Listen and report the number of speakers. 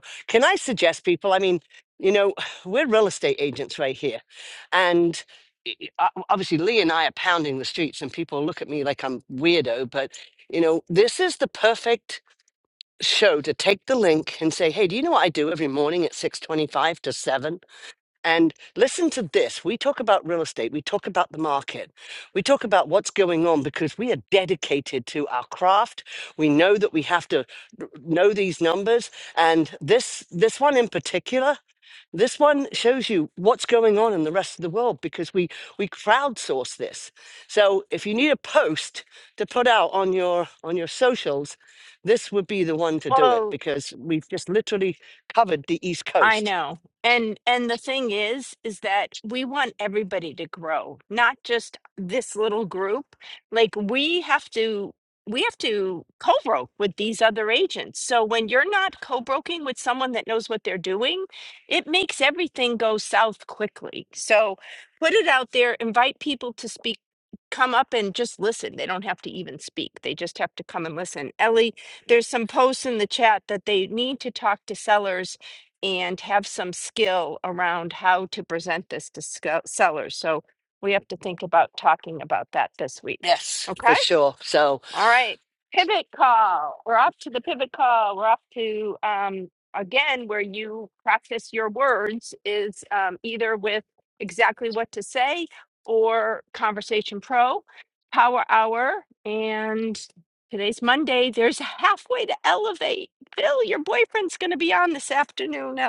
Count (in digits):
2